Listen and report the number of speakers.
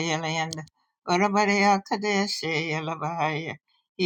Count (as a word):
one